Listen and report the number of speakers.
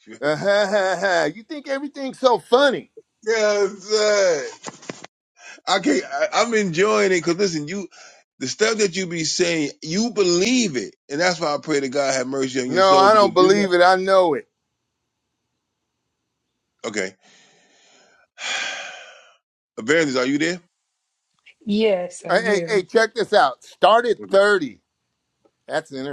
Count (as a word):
three